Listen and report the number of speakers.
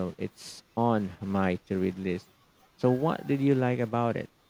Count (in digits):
1